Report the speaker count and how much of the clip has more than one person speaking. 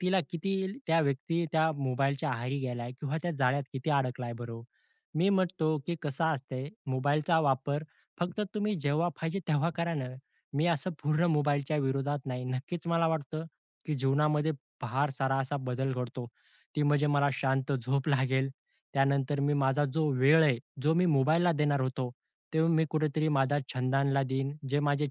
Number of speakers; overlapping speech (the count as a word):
one, no overlap